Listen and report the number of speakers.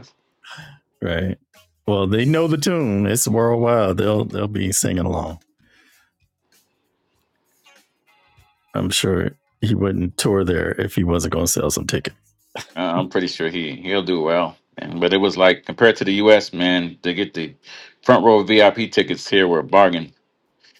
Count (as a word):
two